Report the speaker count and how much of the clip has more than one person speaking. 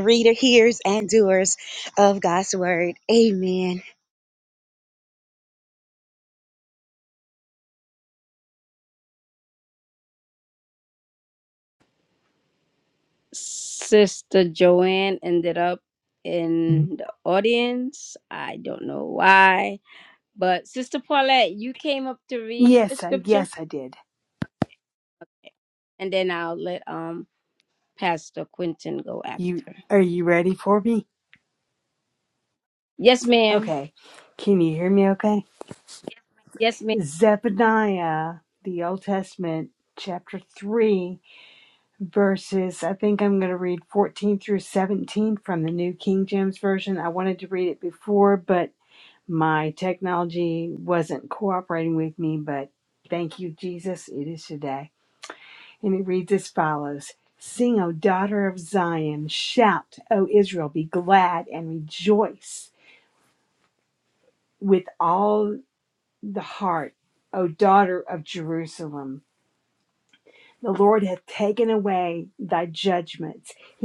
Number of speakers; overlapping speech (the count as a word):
three, about 2%